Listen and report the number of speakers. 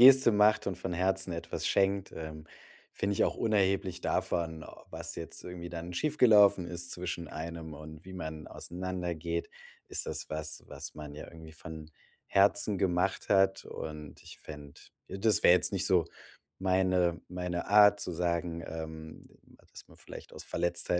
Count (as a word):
one